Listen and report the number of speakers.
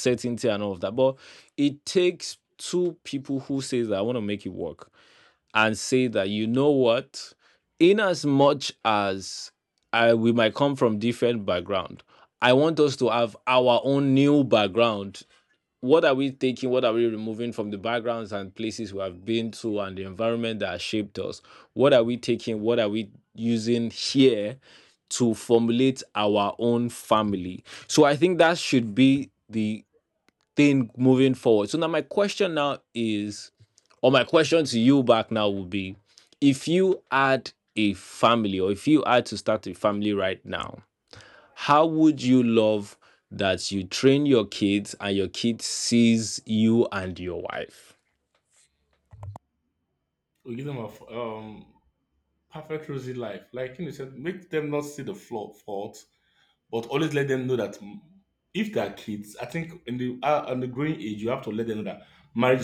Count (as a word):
two